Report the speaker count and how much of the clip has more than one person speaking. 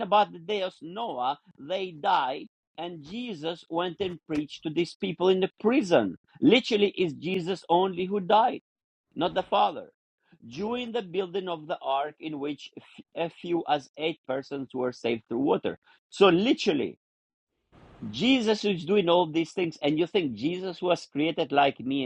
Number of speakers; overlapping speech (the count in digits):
1, no overlap